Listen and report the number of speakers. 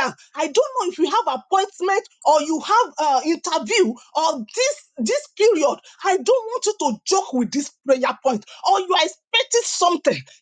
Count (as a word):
one